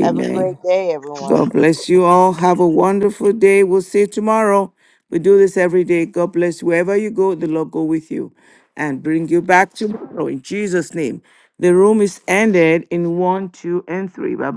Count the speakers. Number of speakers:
two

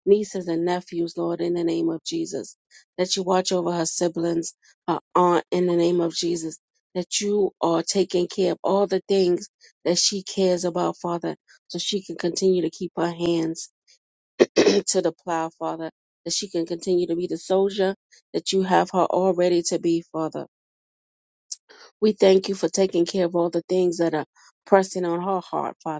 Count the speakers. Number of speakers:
one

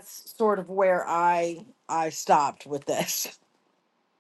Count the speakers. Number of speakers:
one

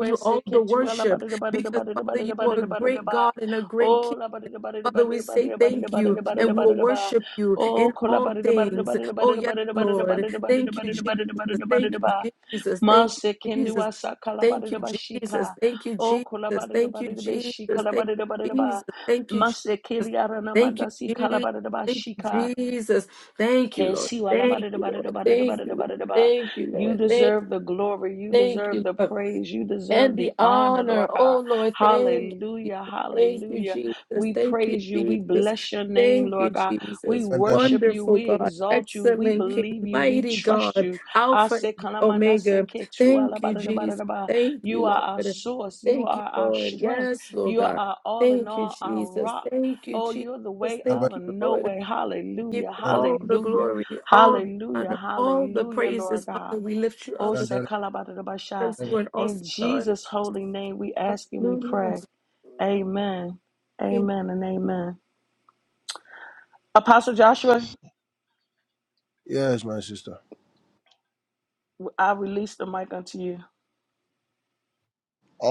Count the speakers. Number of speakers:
three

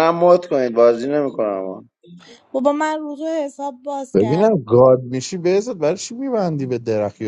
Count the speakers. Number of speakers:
three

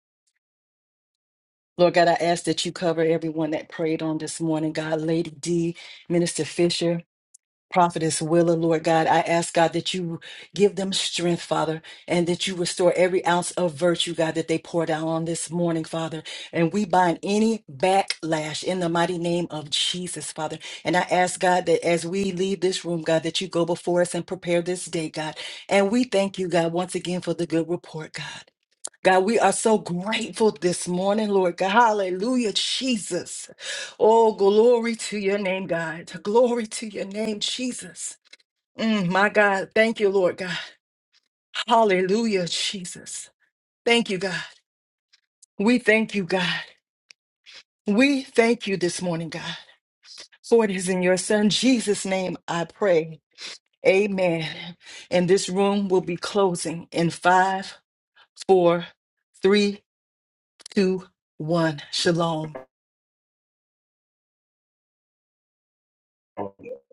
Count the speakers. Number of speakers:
one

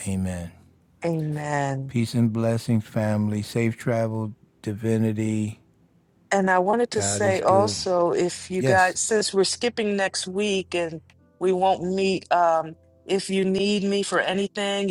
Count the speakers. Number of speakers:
two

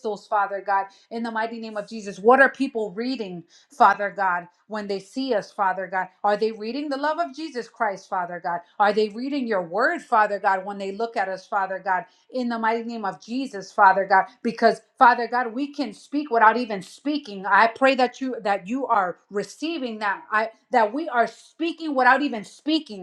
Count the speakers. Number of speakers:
one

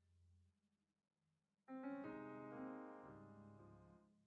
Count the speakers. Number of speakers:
zero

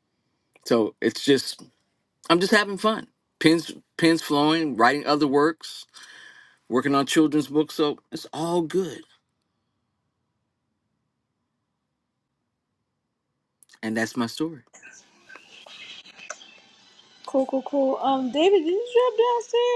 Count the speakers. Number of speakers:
two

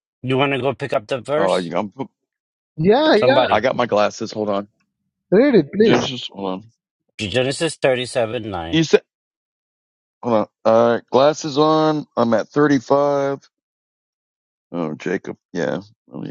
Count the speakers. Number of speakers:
three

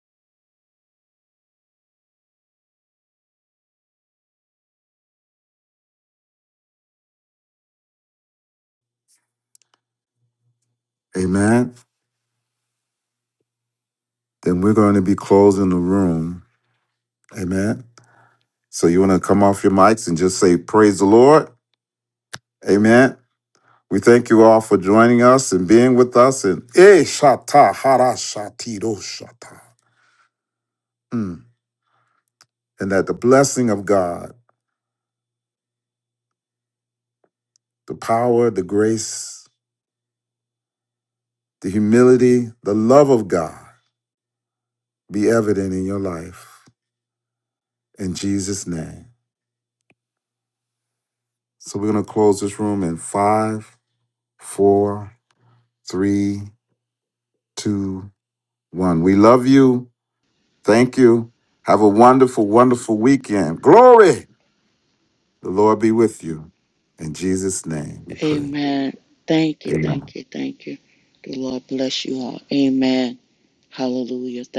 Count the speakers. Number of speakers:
two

